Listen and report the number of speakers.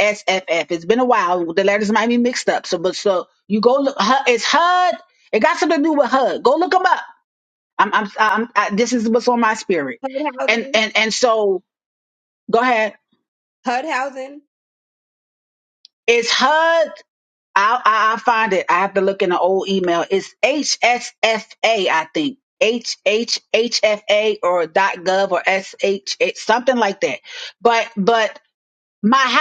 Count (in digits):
2